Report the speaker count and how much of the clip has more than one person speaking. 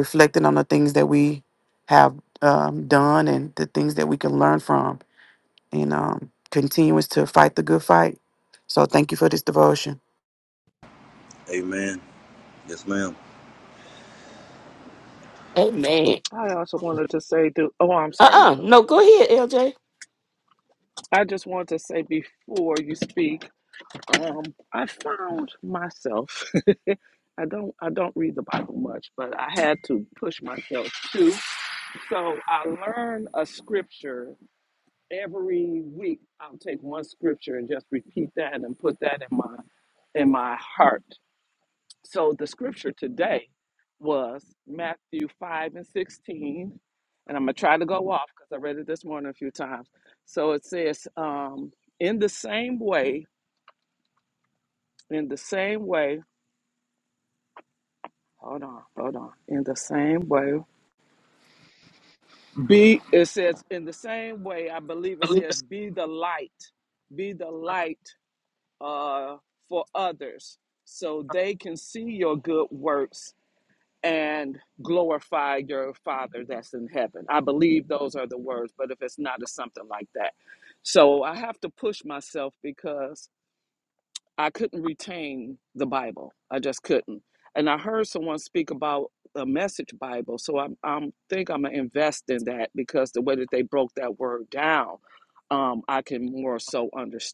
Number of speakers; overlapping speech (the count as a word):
four, about 1%